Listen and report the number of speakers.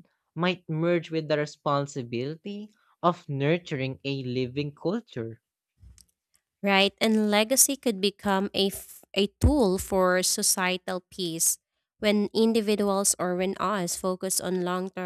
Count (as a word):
two